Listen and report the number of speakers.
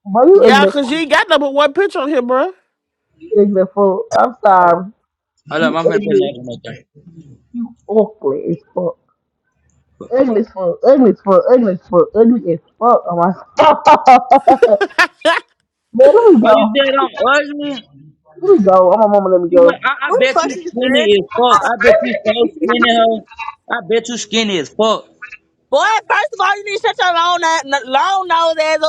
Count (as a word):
four